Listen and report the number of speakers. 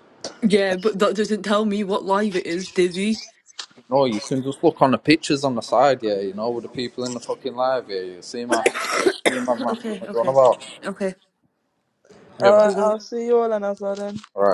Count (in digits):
3